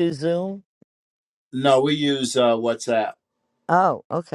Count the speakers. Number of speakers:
2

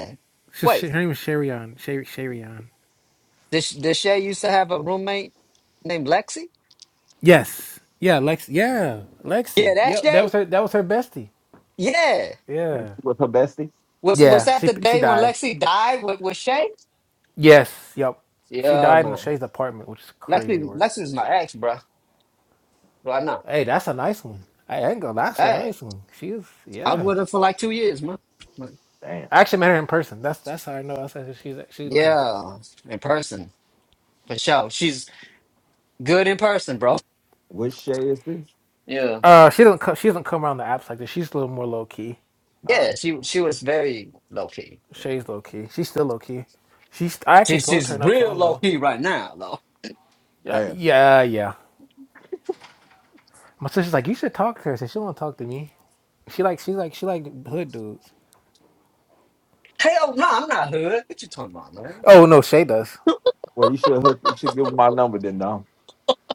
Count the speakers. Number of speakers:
3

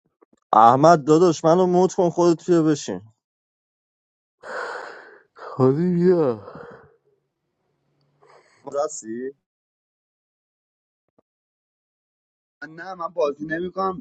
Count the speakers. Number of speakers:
3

